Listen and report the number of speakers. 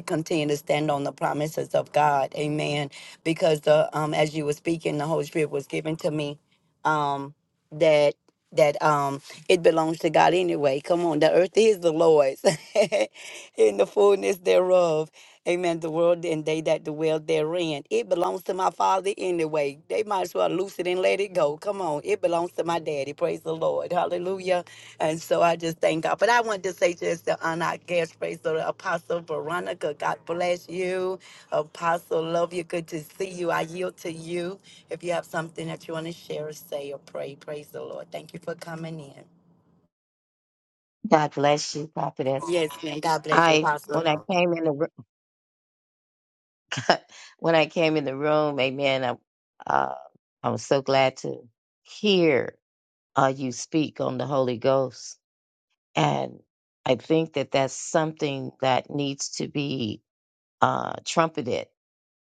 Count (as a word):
two